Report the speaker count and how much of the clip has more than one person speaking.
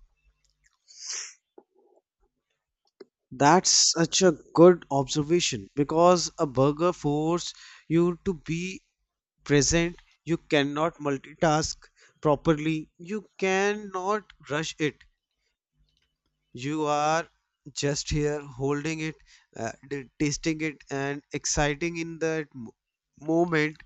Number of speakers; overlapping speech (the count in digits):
1, no overlap